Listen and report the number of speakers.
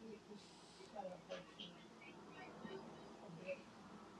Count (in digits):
0